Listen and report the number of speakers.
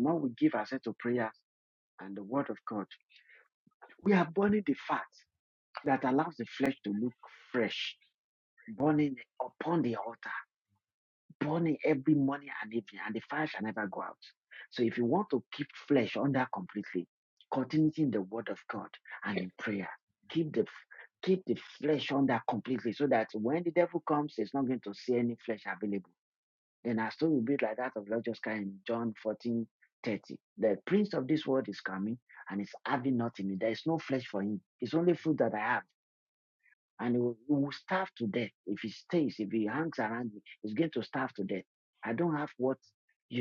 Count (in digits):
1